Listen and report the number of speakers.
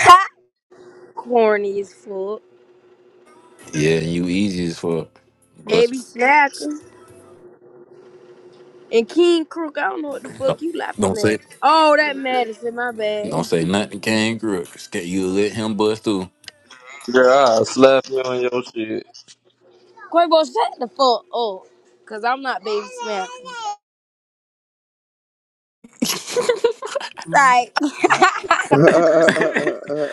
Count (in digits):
4